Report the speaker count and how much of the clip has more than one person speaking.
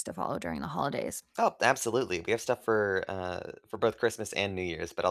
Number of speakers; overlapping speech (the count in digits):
2, no overlap